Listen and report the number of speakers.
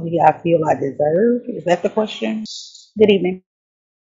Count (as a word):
one